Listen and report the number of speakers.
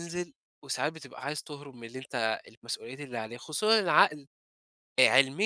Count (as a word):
one